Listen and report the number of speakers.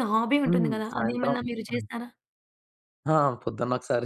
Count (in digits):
2